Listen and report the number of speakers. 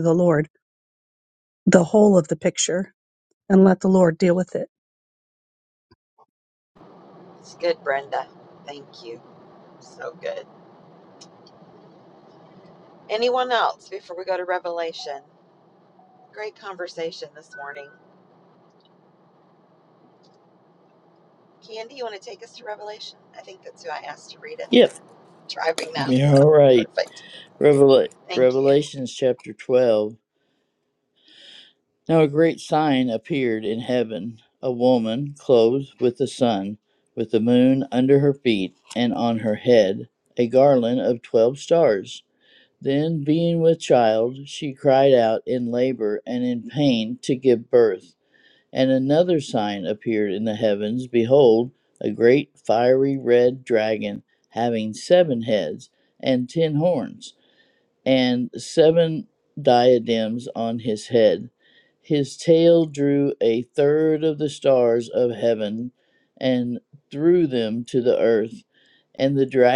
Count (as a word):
three